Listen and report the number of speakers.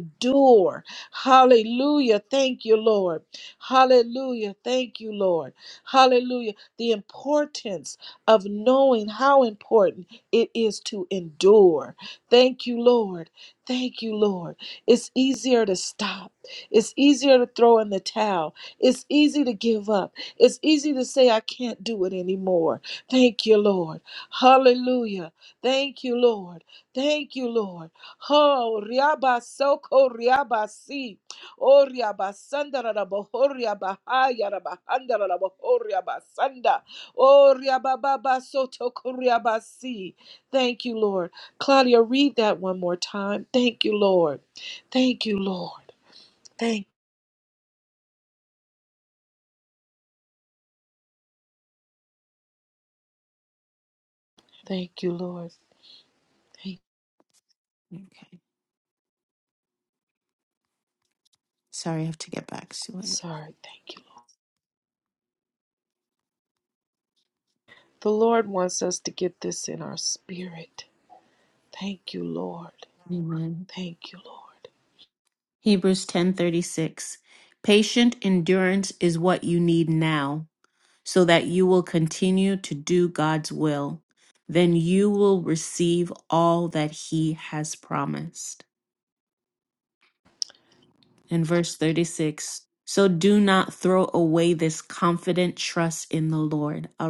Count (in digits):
2